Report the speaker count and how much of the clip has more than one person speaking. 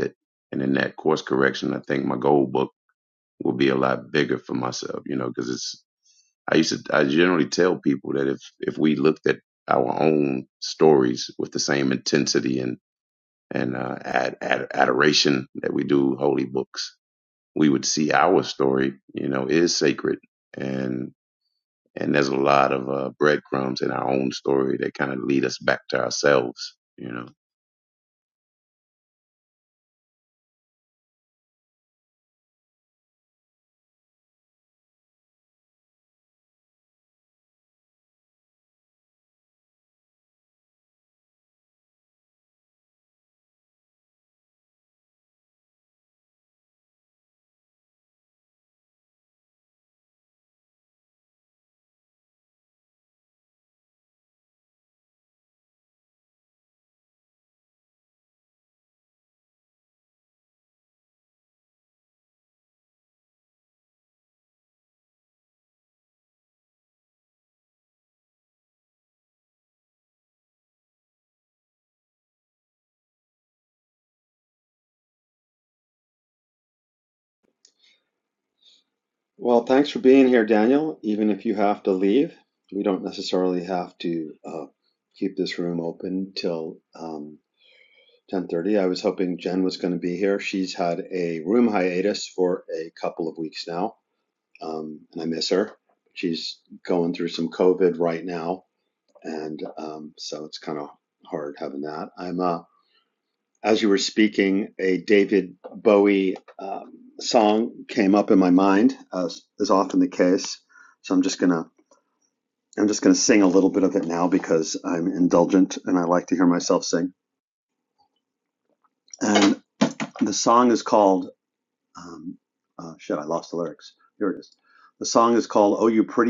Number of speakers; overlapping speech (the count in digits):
2, no overlap